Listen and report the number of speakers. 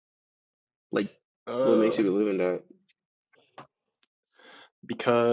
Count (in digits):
2